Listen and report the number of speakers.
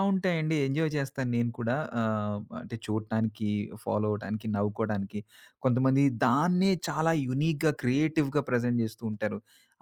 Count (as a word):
one